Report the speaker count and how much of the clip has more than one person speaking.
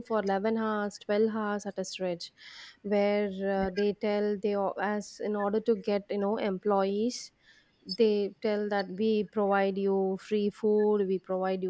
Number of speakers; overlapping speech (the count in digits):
1, no overlap